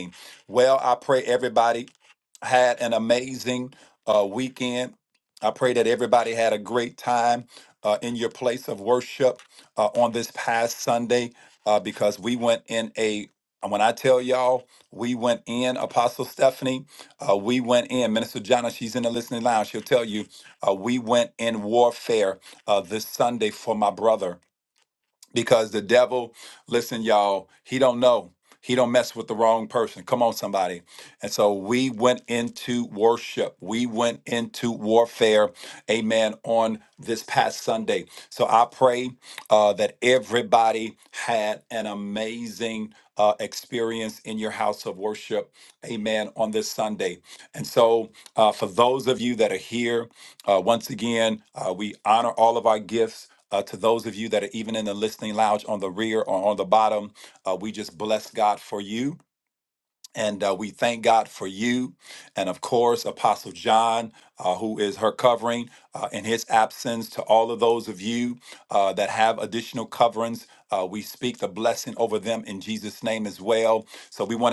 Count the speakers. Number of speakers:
one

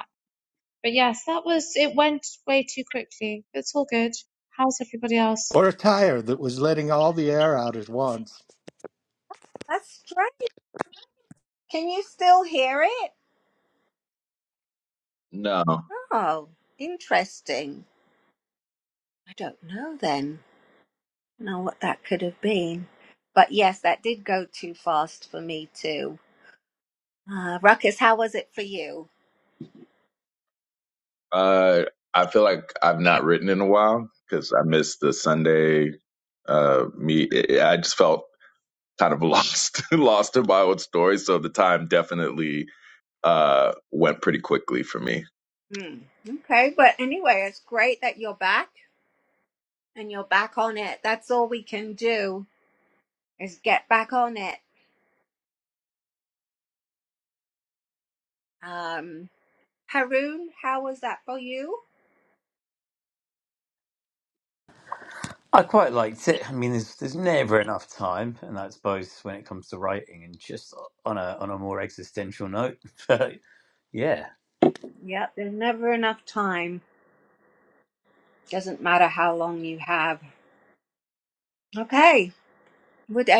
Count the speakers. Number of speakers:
five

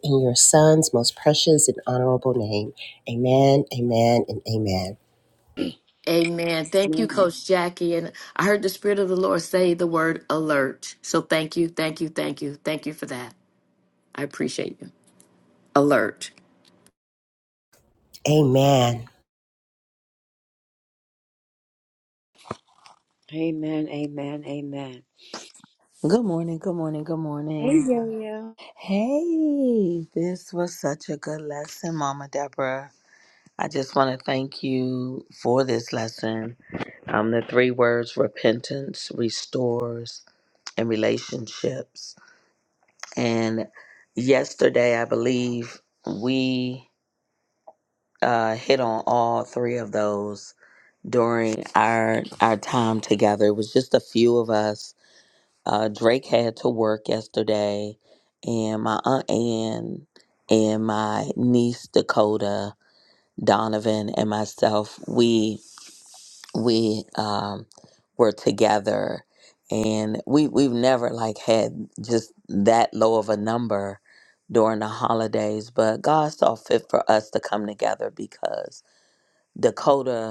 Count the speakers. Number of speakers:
four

